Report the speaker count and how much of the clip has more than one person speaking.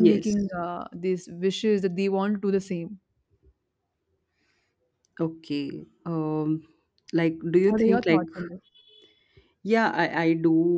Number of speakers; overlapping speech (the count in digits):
2, about 10%